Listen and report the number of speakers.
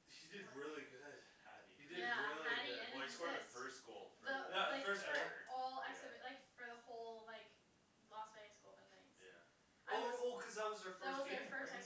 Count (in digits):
3